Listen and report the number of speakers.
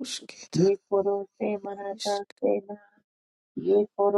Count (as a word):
two